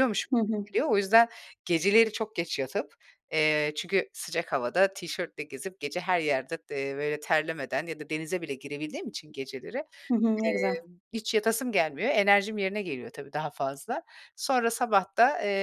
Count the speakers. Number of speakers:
2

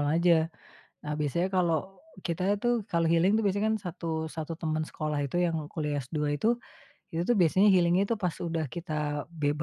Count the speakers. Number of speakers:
1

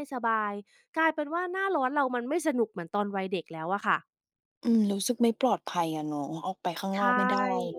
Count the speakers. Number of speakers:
2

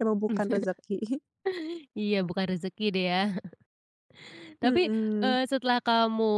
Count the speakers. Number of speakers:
2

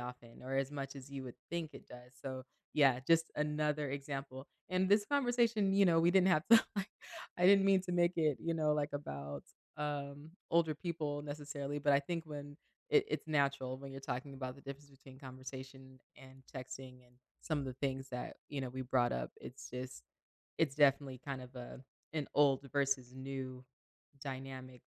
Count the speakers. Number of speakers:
1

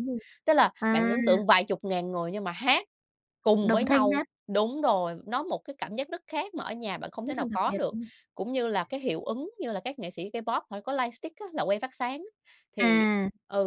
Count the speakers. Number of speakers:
2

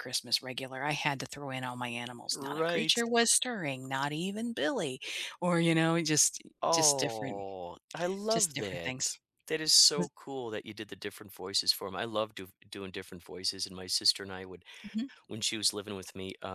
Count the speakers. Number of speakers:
2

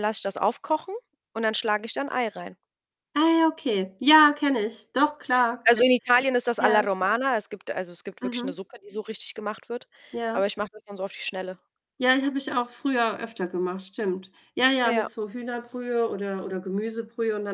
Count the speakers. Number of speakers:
2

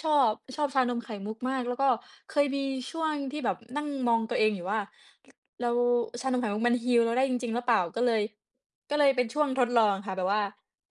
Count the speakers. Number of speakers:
1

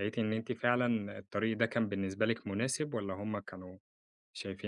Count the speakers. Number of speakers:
1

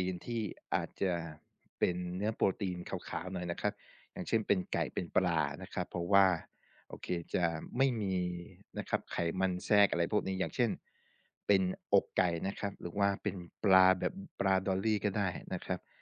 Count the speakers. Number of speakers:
1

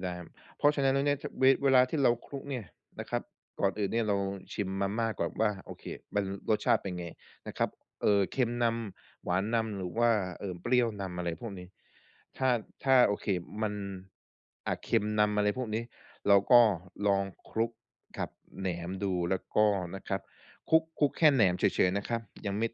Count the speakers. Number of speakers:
1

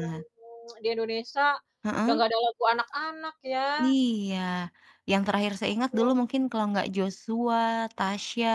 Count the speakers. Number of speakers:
2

